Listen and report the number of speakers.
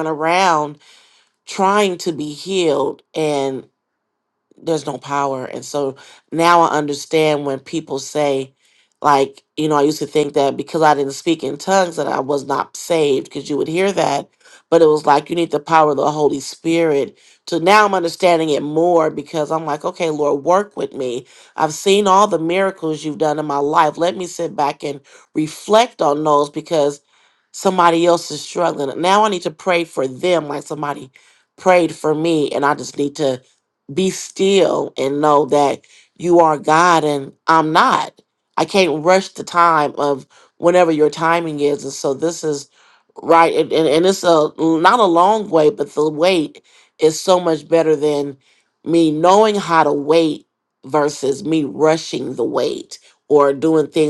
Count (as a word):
one